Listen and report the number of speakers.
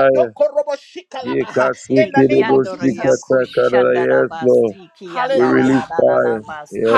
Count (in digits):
3